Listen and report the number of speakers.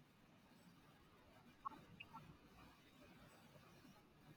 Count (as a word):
zero